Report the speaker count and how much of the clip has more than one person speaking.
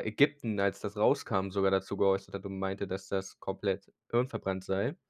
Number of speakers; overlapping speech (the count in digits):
1, no overlap